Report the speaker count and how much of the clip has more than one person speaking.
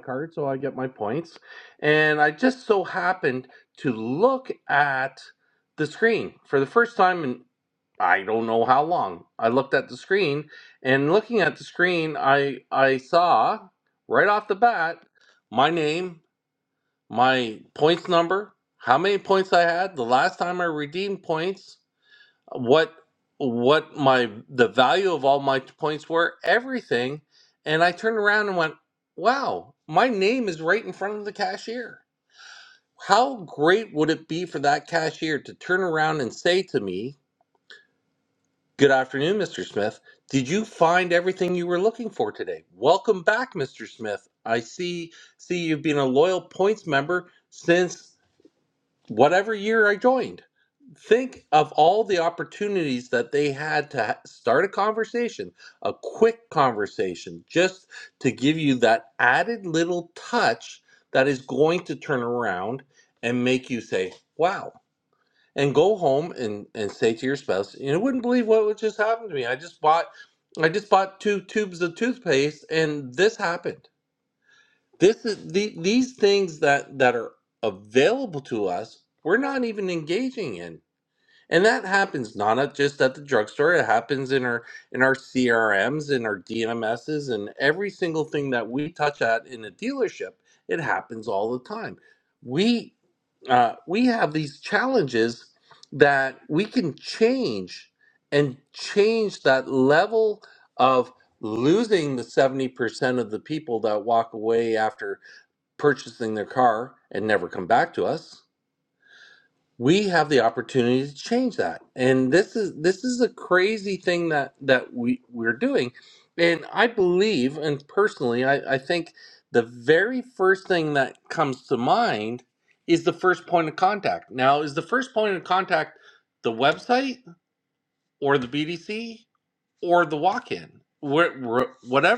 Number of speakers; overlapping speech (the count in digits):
1, no overlap